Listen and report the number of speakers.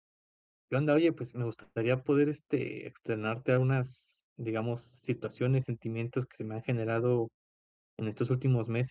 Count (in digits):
1